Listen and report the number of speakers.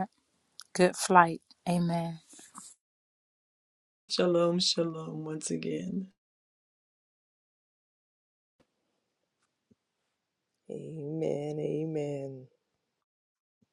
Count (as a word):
three